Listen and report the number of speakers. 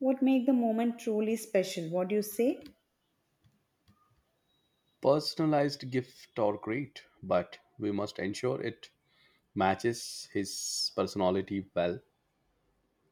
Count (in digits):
2